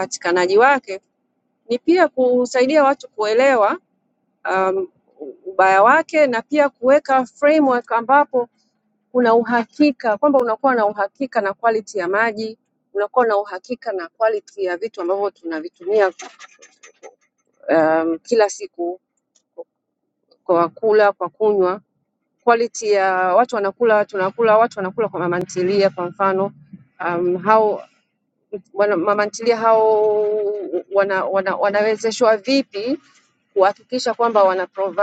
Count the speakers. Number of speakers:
one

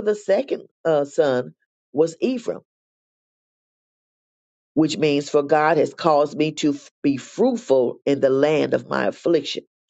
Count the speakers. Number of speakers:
one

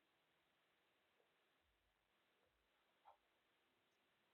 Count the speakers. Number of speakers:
zero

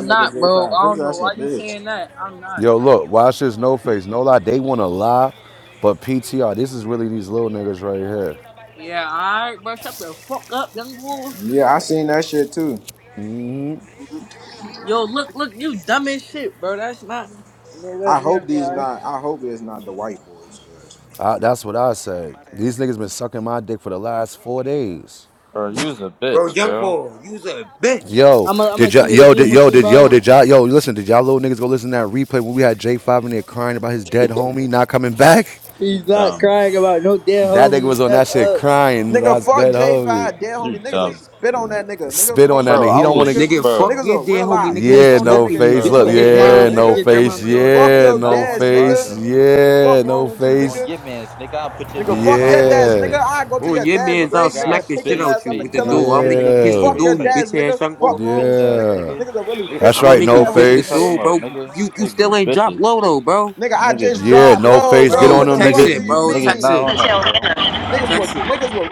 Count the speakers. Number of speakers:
five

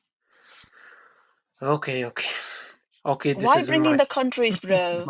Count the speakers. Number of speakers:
two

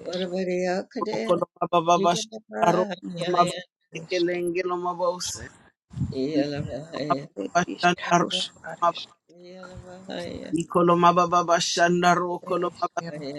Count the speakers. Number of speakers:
three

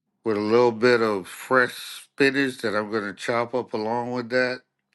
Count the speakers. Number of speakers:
one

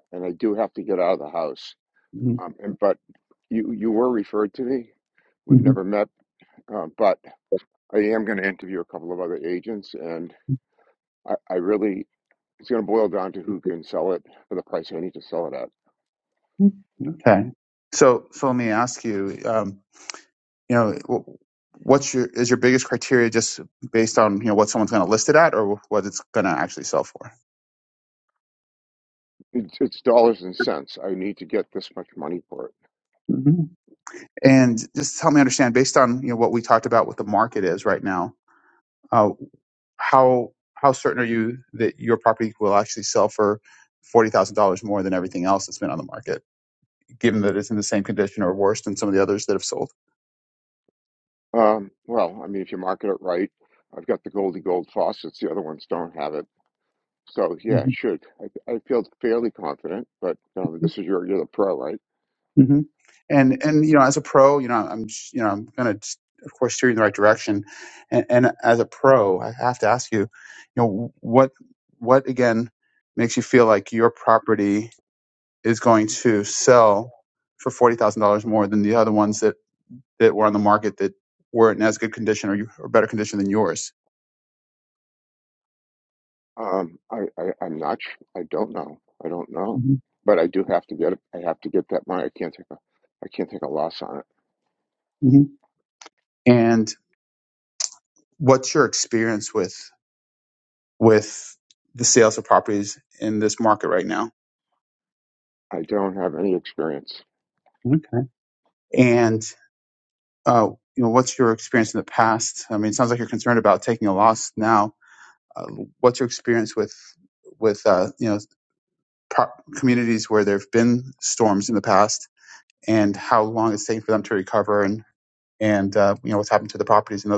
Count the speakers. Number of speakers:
two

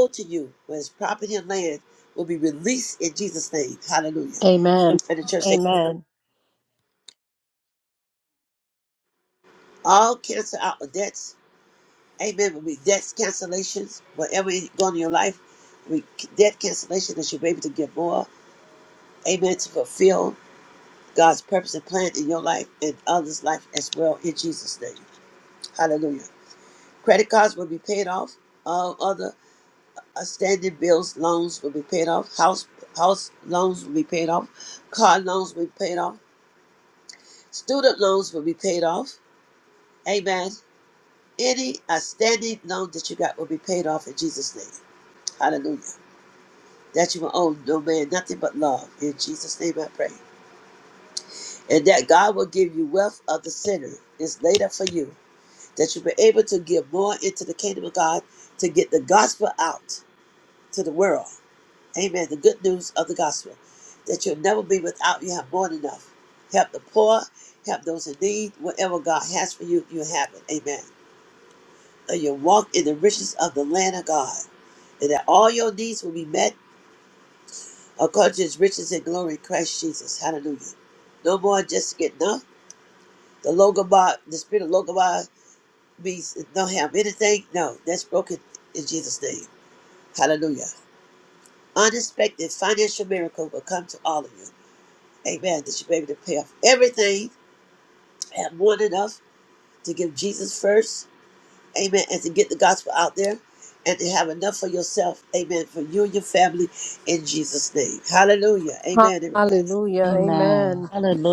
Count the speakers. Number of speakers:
three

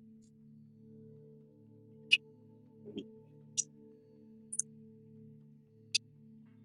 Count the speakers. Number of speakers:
zero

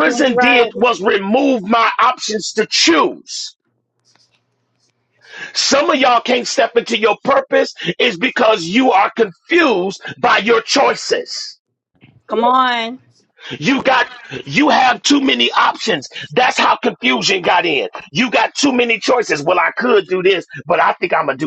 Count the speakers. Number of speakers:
two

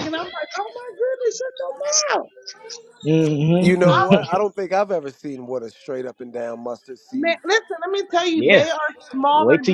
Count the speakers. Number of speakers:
three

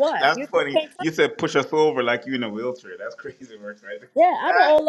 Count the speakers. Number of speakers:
two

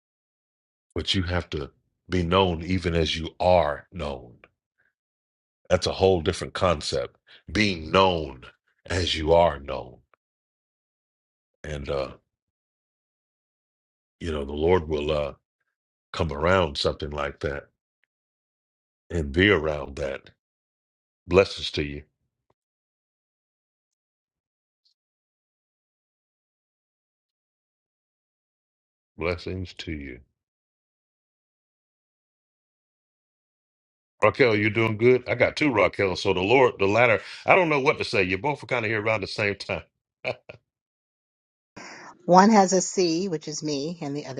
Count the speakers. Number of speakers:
two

